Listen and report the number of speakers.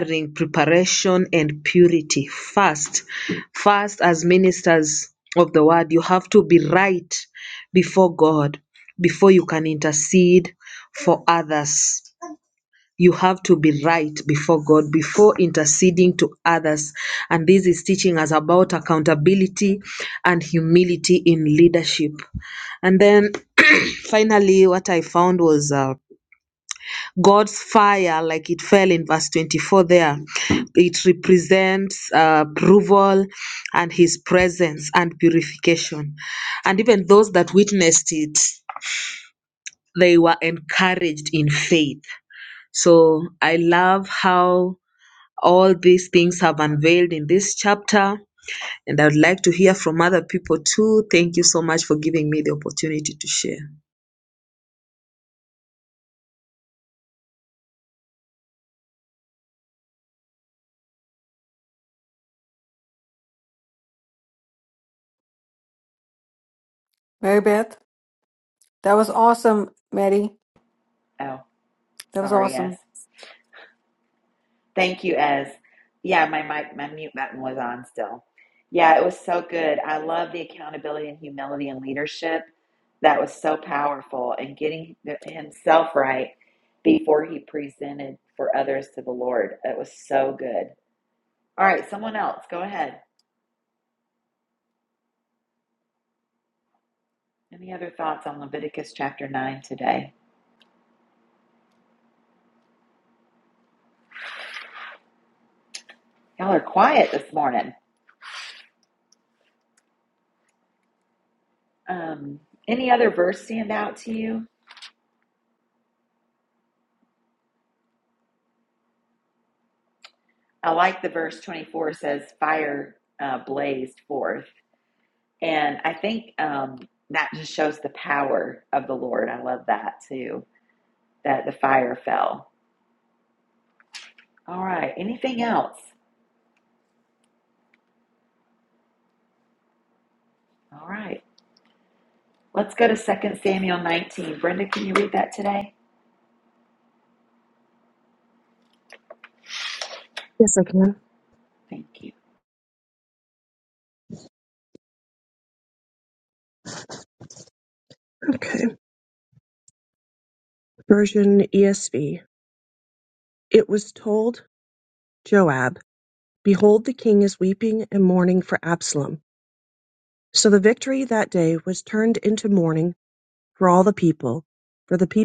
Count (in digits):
4